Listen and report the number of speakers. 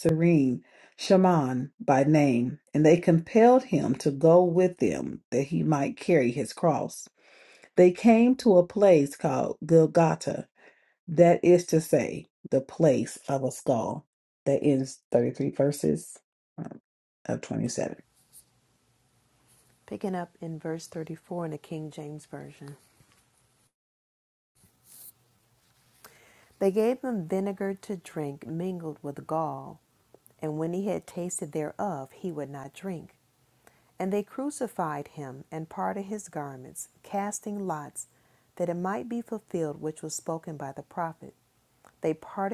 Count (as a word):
two